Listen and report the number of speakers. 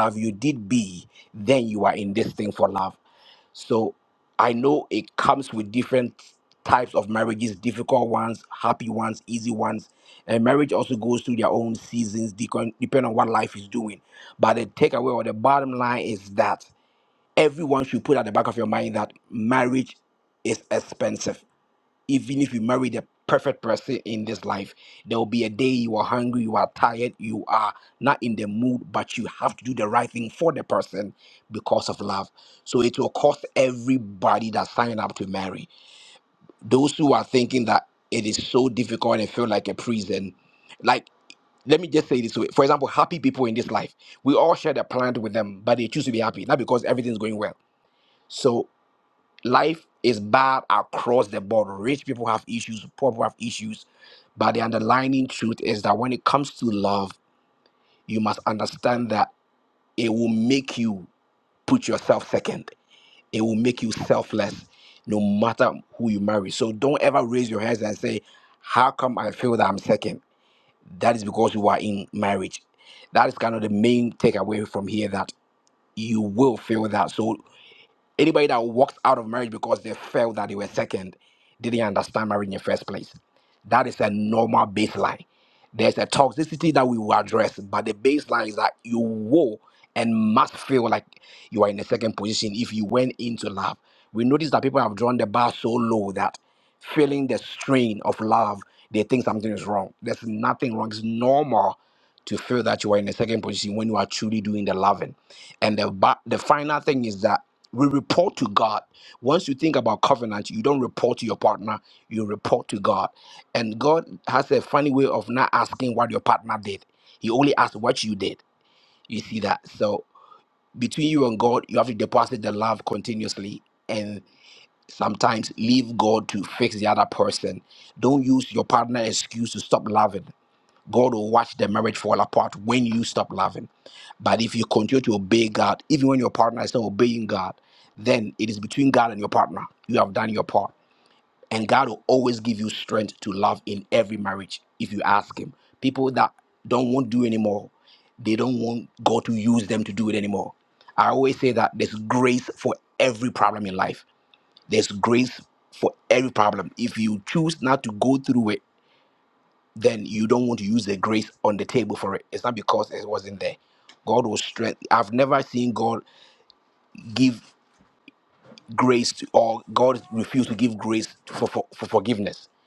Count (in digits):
1